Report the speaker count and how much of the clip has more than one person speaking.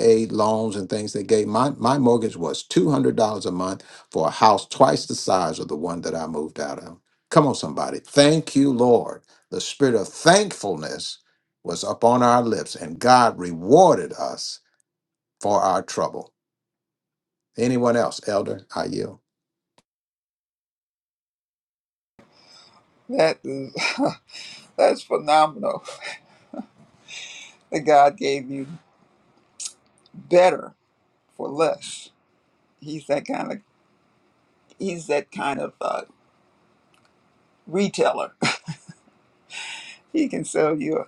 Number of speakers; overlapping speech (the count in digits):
2, no overlap